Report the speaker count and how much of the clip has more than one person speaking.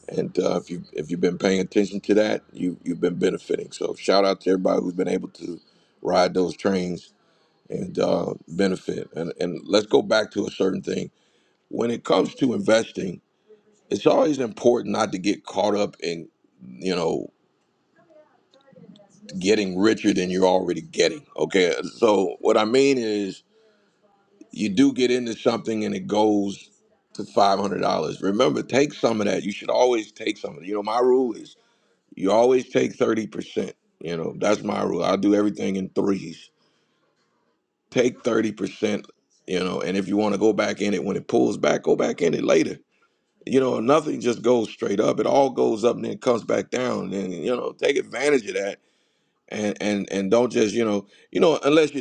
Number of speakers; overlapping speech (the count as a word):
one, no overlap